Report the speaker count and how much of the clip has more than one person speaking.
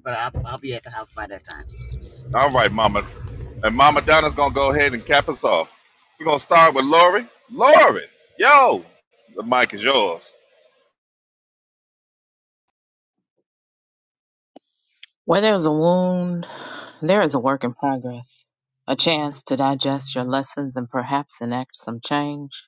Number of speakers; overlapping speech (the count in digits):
3, no overlap